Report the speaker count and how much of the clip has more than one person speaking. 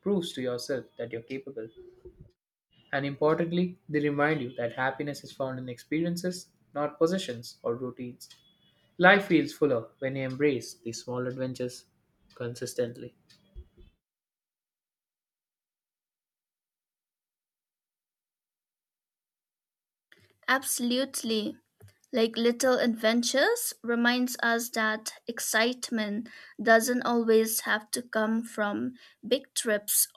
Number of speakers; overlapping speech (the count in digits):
2, no overlap